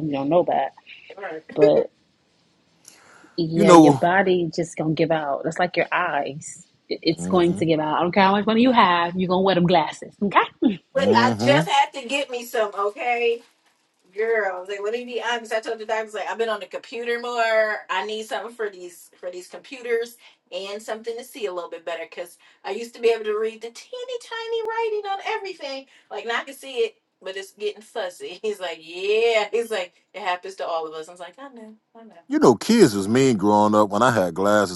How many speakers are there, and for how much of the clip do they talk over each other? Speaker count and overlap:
three, about 4%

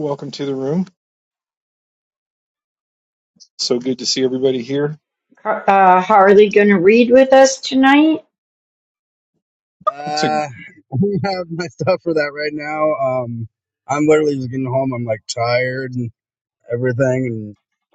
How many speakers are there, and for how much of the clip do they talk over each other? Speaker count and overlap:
three, no overlap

